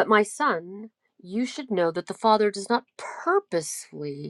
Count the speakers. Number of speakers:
one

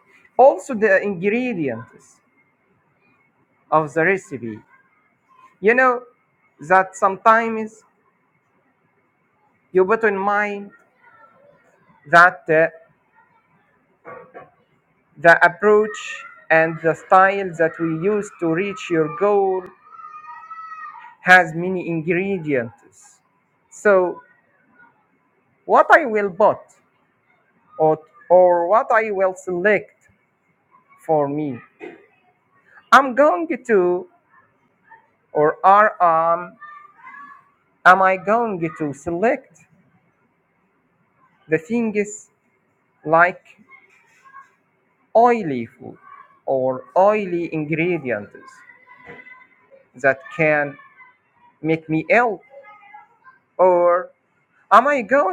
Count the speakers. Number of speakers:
one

